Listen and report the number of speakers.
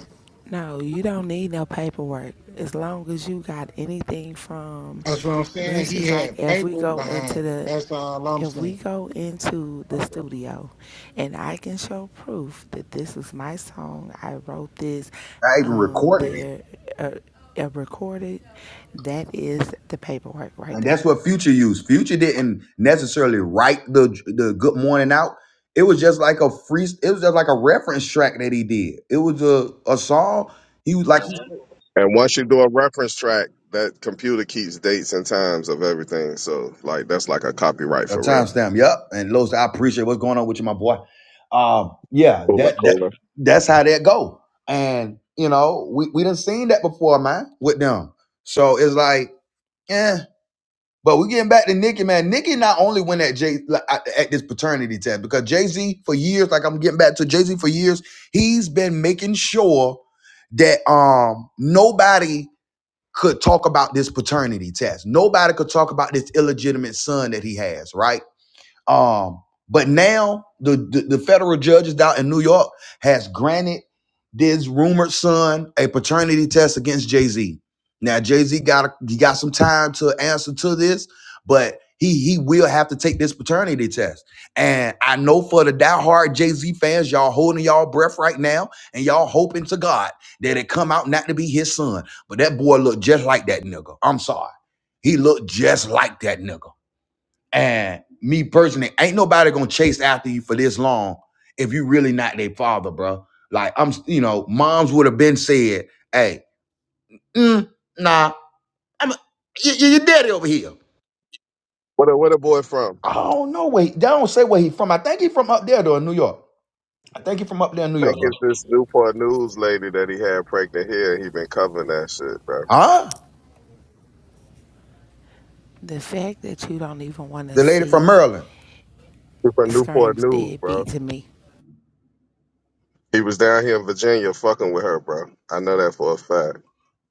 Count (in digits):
4